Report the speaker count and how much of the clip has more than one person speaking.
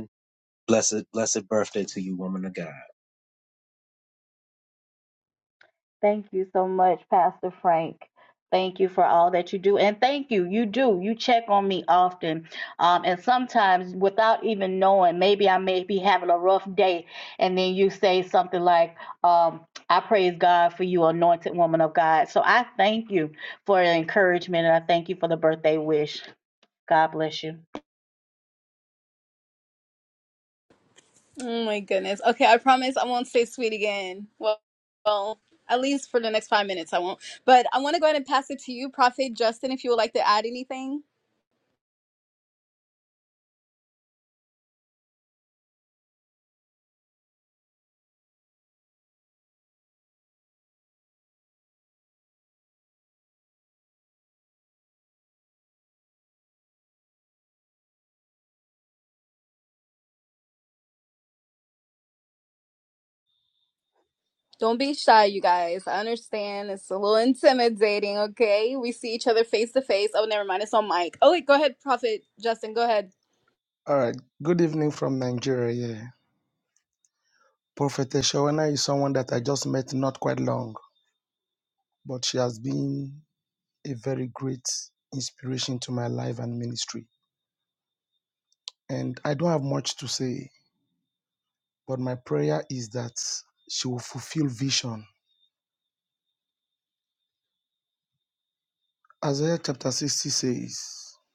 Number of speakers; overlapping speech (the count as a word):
four, no overlap